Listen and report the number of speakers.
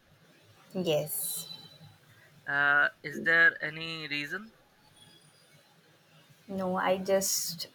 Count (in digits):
2